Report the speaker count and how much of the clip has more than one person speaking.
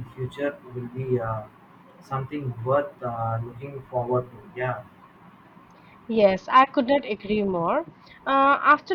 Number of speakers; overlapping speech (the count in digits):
2, no overlap